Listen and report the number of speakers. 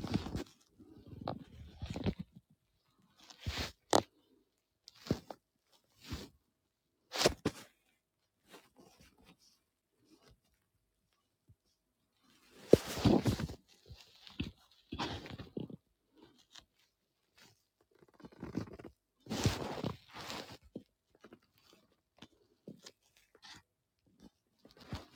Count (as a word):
zero